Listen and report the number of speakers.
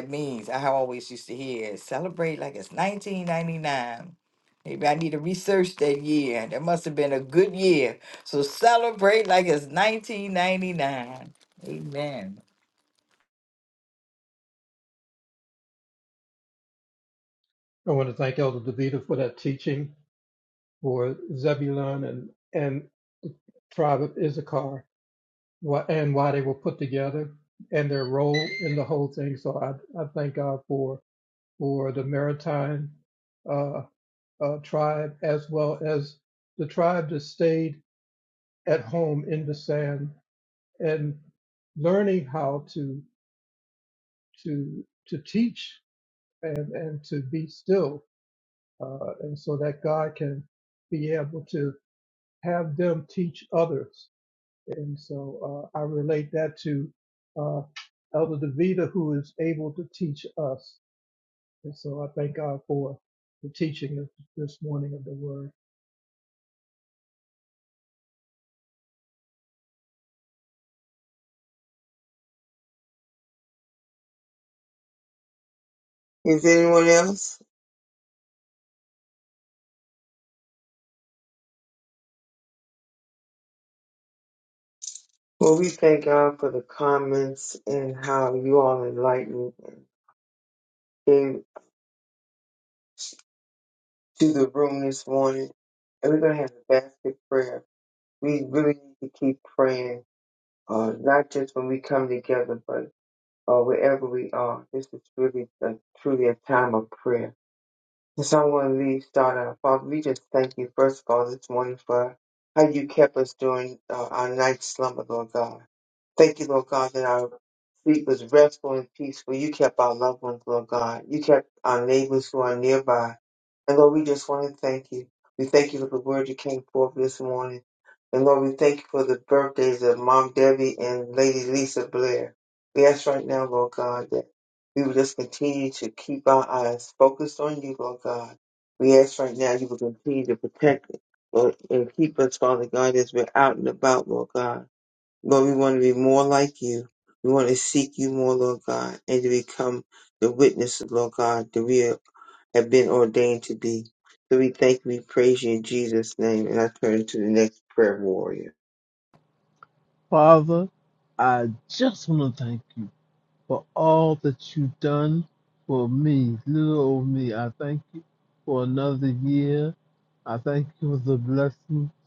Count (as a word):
four